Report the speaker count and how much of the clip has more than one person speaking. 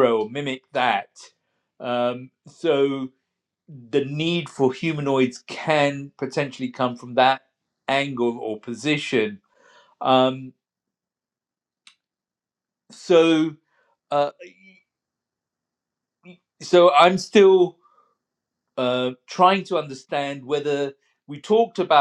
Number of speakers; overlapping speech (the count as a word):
one, no overlap